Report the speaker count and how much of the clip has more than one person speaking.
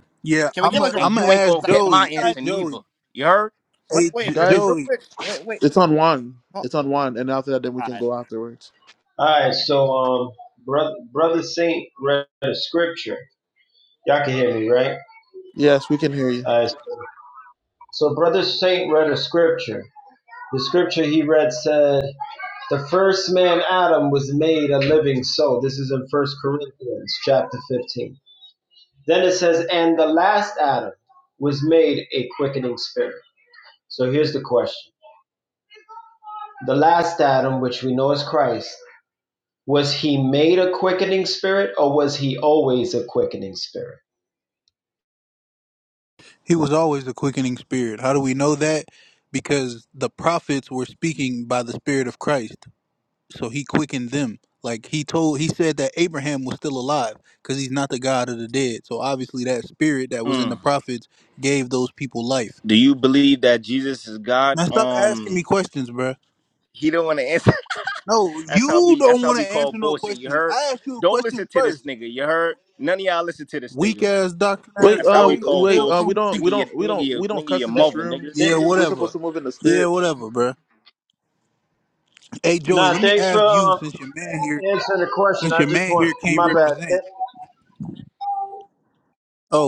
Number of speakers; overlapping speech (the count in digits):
5, about 17%